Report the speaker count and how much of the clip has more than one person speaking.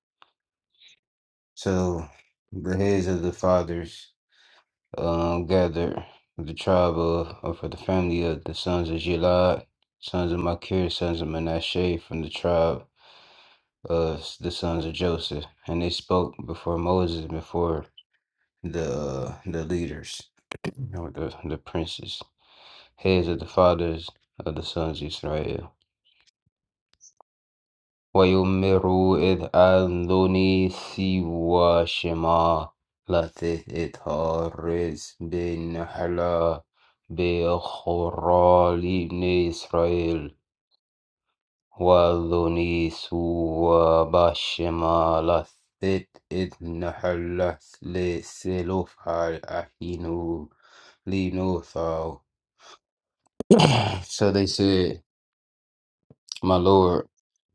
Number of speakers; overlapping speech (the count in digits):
1, no overlap